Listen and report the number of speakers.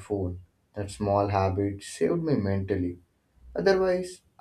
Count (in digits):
1